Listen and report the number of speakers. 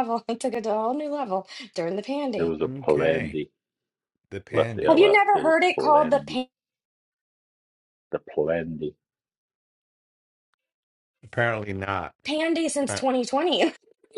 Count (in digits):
3